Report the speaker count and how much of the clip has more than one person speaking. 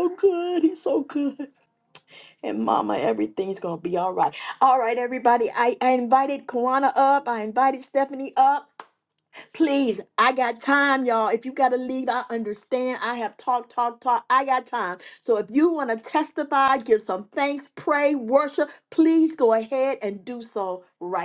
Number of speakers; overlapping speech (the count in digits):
1, no overlap